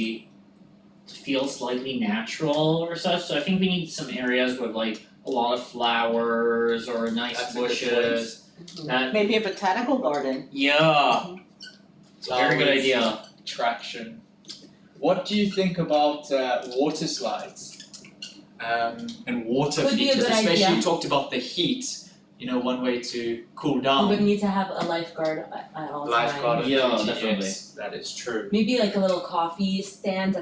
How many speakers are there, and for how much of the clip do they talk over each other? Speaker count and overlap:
four, about 13%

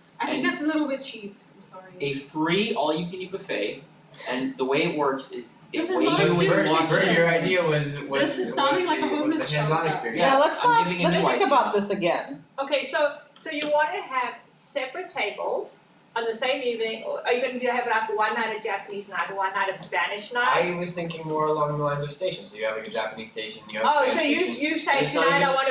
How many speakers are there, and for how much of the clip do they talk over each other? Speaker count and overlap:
five, about 29%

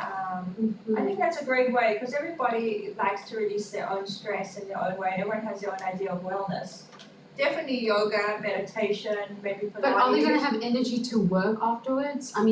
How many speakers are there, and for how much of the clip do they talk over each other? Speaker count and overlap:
two, about 7%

